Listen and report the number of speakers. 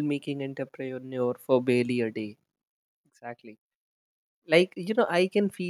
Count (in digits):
1